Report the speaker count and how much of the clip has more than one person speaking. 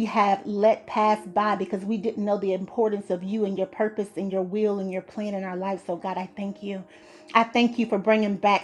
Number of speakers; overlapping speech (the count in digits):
1, no overlap